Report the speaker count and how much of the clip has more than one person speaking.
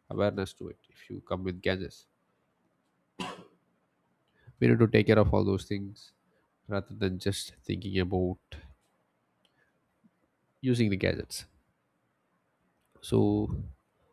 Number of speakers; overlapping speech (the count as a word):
one, no overlap